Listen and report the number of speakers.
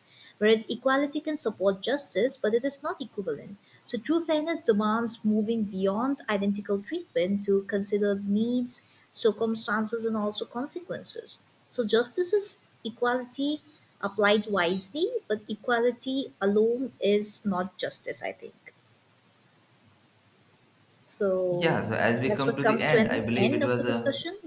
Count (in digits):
2